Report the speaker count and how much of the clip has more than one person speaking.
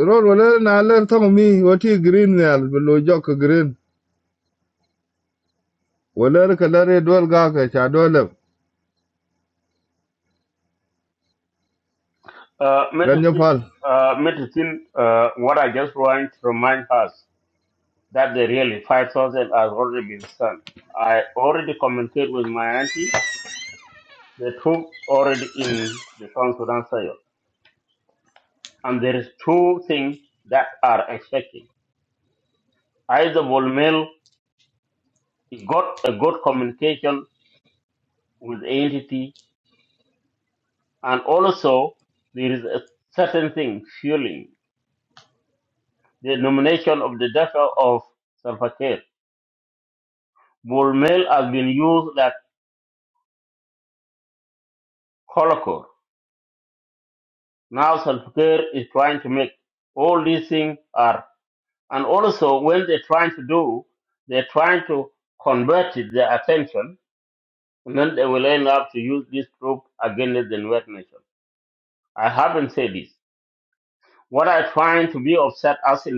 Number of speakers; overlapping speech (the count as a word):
two, about 1%